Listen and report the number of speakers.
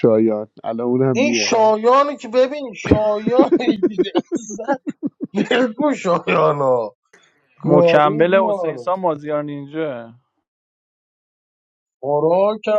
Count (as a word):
three